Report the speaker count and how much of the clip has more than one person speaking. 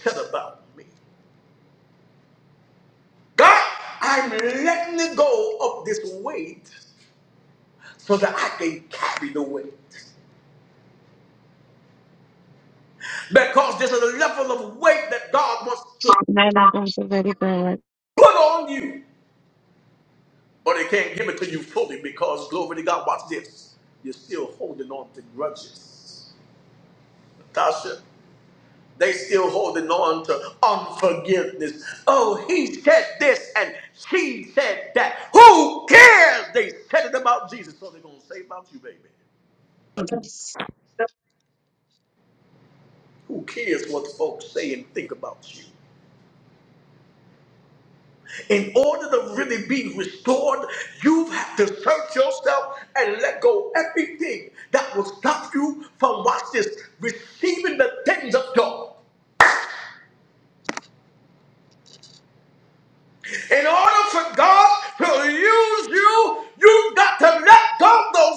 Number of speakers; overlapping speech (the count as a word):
two, under 1%